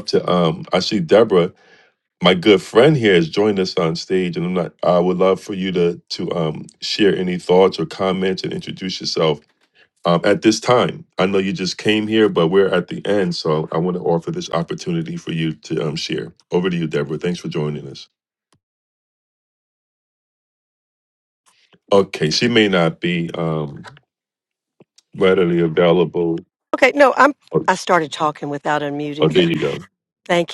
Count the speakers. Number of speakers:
2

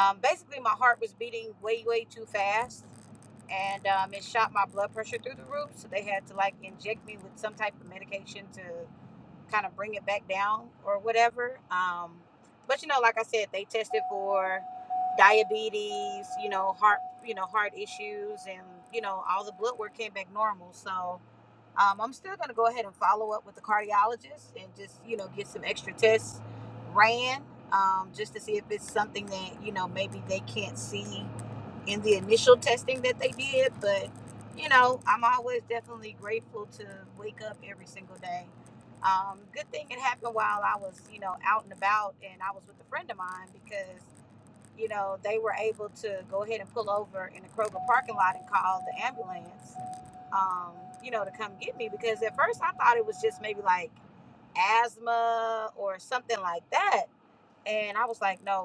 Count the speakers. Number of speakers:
1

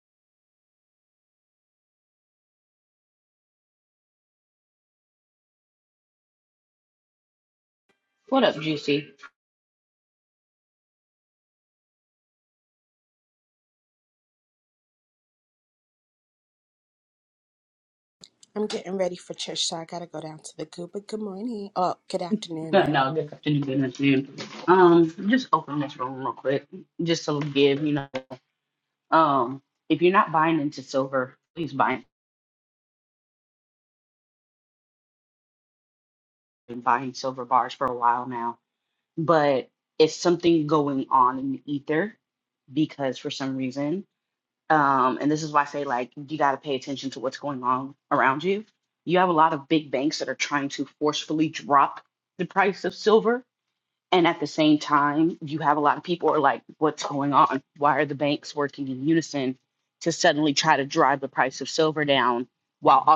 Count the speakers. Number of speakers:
2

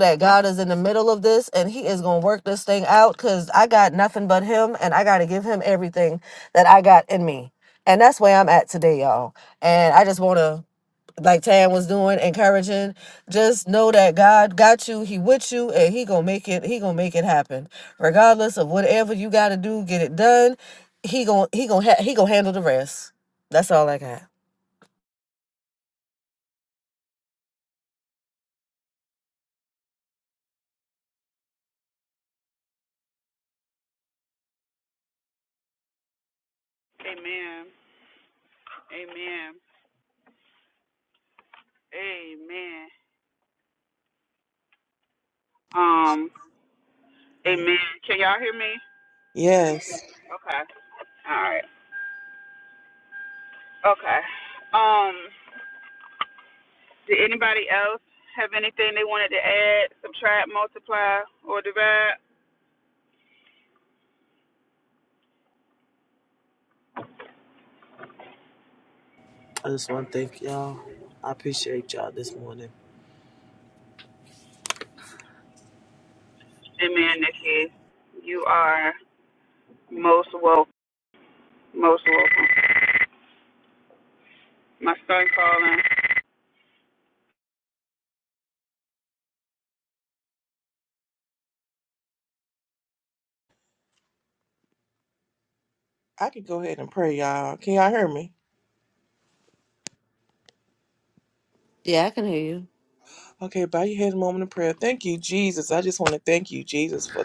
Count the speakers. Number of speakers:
4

